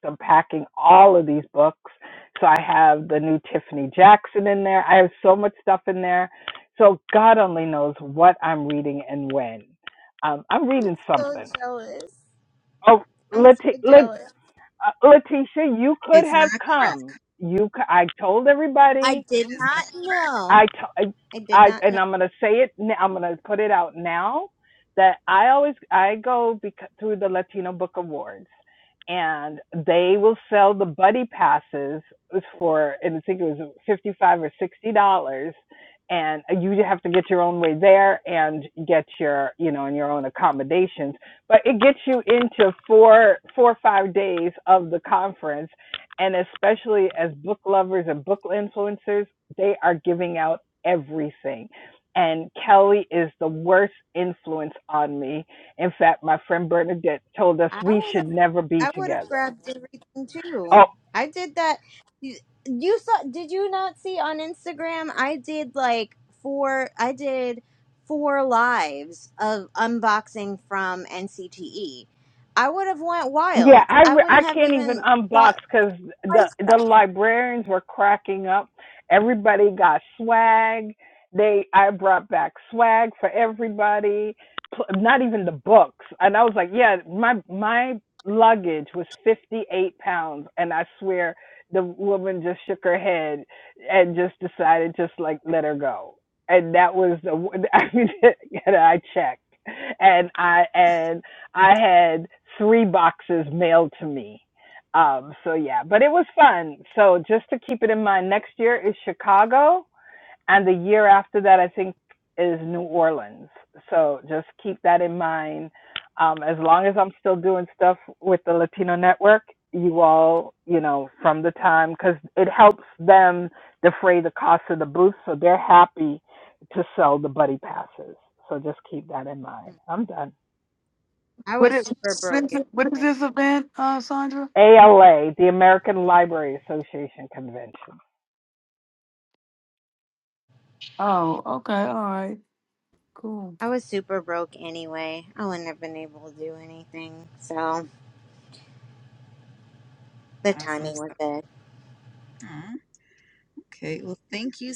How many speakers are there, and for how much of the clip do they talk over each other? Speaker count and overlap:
4, about 5%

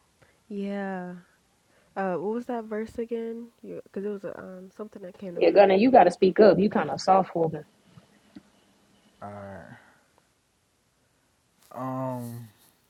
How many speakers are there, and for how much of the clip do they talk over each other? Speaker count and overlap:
3, about 2%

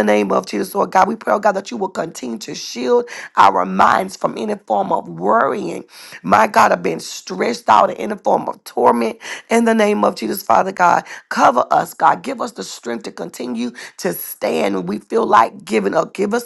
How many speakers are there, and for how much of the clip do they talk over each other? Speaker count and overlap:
1, no overlap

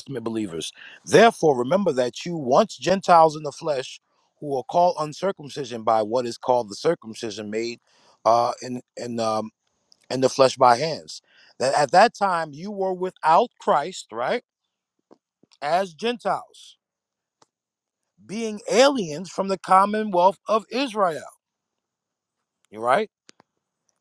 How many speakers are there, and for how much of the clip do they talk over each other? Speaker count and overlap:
1, no overlap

